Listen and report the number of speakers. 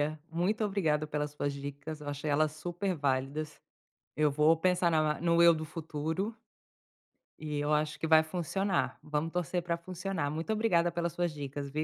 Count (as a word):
one